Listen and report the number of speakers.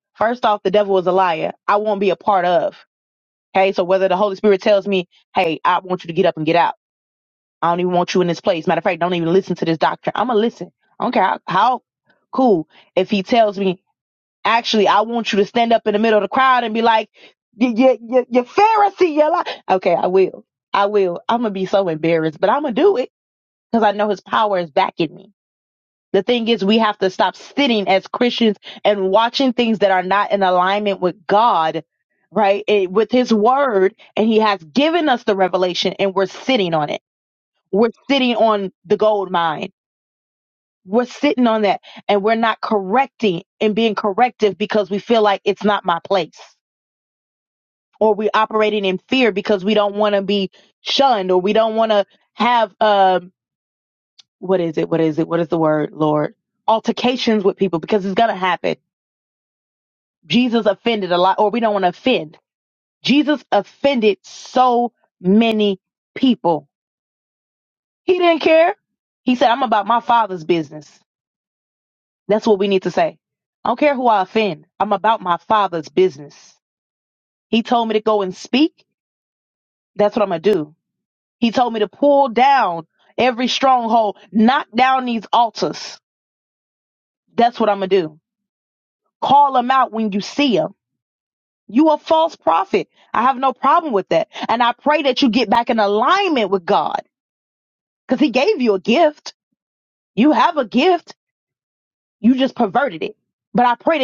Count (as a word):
one